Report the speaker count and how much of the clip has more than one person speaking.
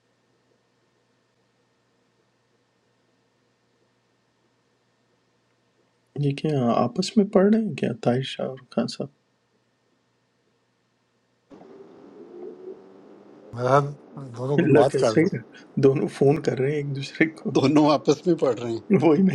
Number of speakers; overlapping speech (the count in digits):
3, about 3%